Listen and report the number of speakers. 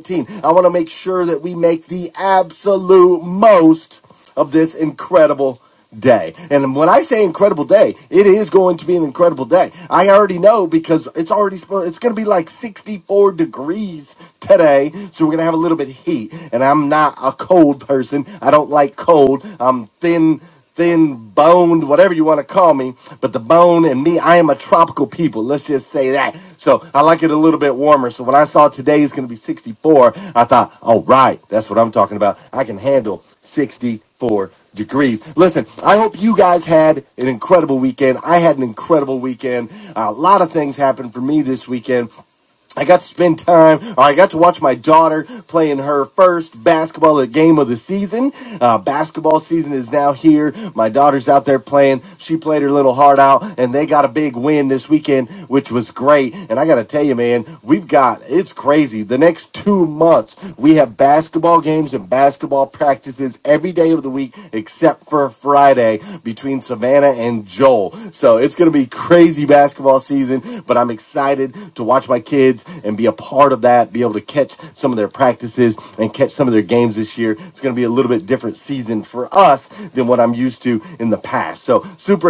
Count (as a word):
one